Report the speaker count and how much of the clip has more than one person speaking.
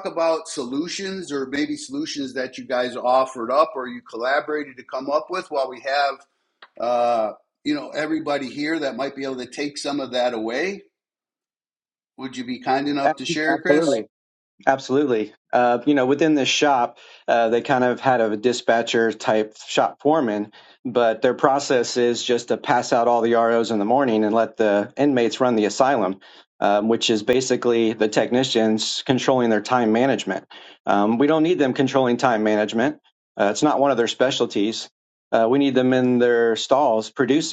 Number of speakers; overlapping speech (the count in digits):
2, about 1%